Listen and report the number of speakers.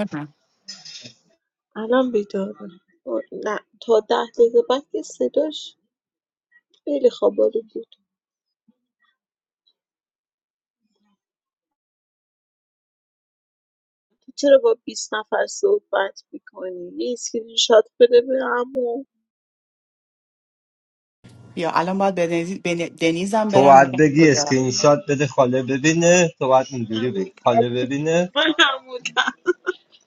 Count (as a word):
three